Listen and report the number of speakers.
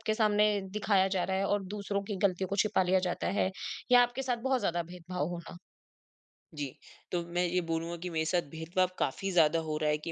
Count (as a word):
two